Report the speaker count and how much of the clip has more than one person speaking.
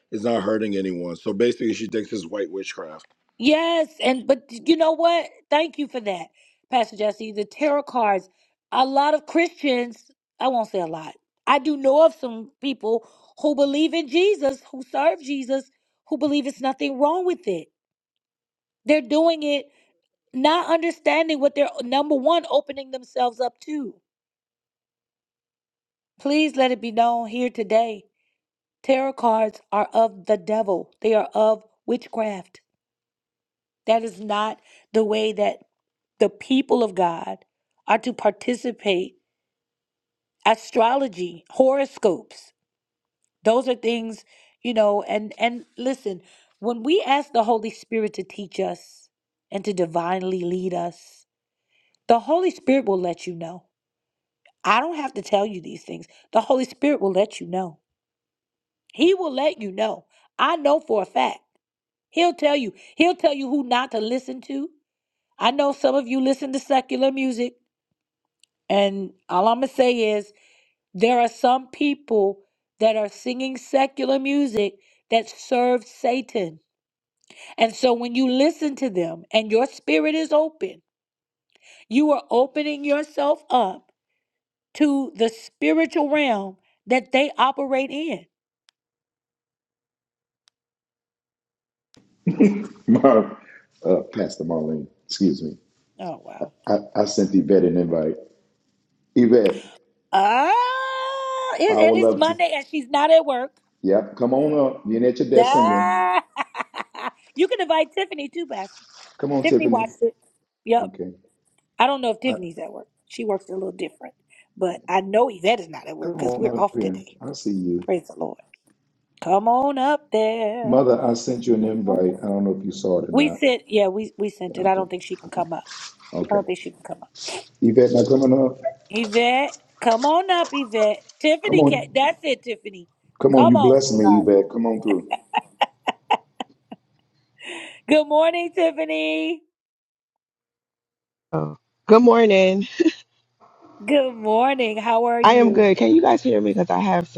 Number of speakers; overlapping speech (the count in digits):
4, about 4%